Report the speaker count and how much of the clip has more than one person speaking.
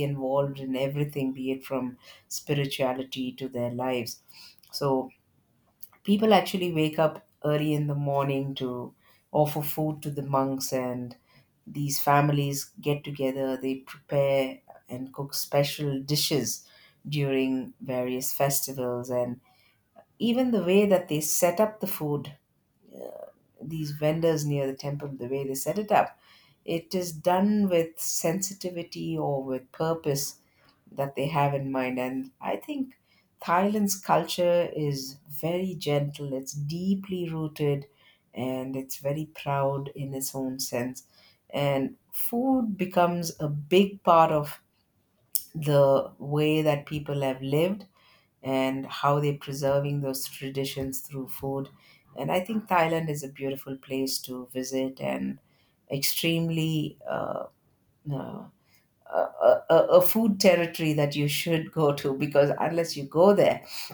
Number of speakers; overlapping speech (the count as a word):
one, no overlap